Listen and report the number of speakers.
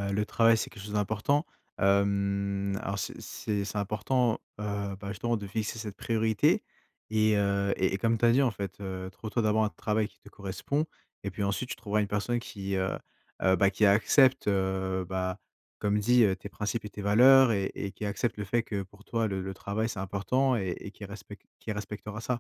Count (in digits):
1